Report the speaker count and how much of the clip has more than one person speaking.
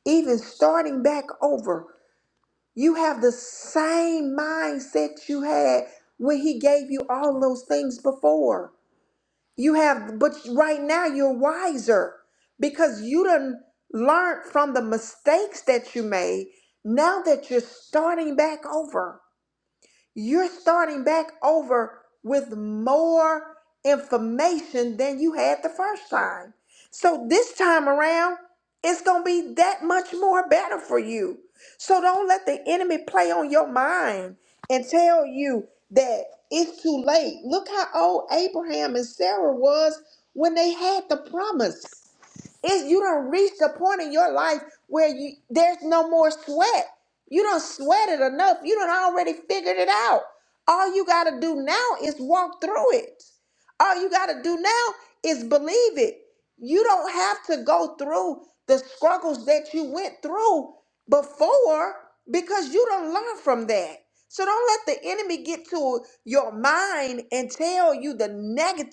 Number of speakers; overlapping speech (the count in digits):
1, no overlap